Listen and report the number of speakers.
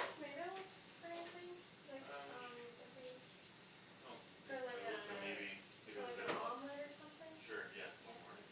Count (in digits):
2